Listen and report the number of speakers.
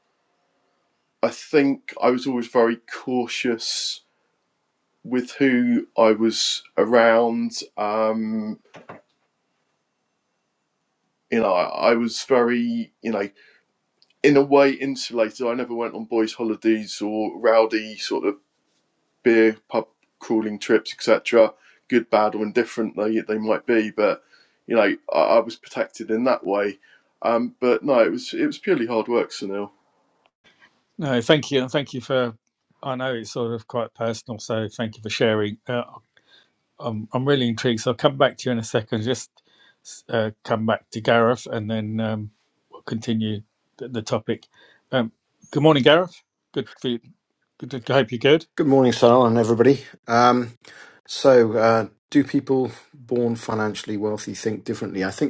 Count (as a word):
three